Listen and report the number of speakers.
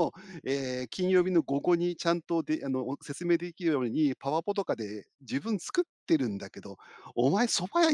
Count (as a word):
one